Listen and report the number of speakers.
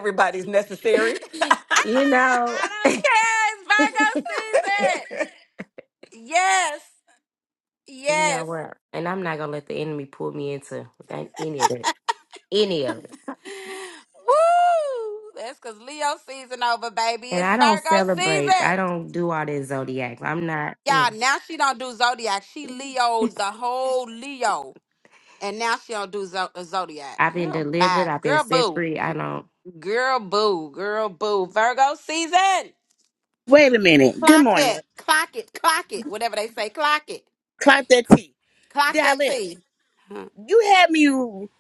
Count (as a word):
four